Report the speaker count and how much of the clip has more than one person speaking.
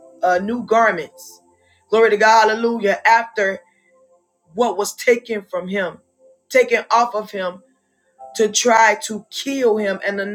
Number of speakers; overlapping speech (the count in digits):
1, no overlap